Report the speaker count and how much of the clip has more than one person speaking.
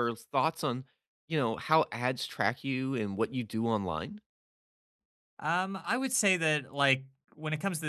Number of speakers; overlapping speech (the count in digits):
2, no overlap